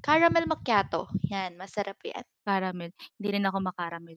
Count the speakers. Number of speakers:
2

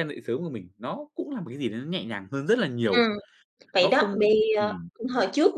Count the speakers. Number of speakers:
2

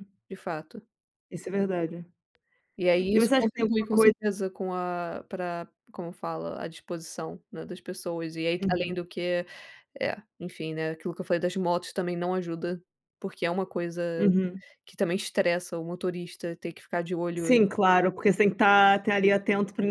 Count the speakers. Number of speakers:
2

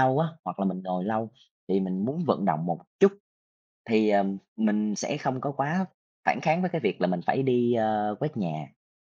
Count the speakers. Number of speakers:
1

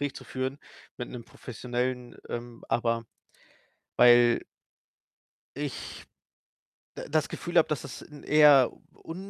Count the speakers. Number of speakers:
1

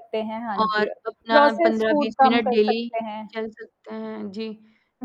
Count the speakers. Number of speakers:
2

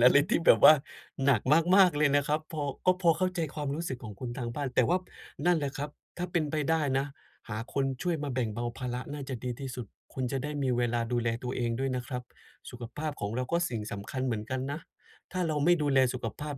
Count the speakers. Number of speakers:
1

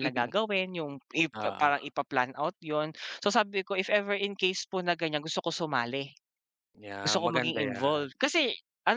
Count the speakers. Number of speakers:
2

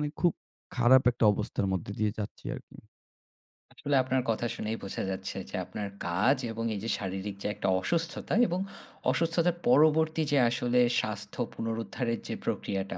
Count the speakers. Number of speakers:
2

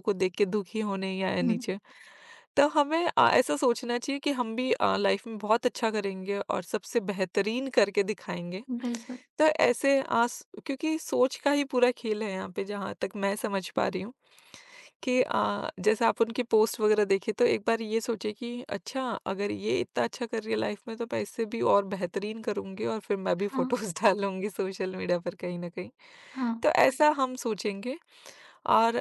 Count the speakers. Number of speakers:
2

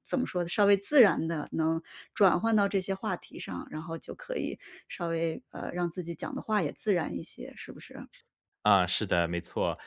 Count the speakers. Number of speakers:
2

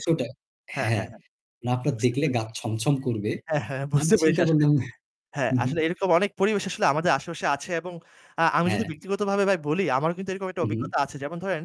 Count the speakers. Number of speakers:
2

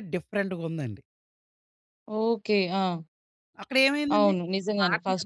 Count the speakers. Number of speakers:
2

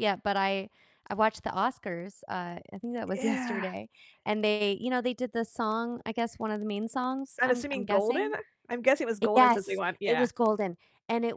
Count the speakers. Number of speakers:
2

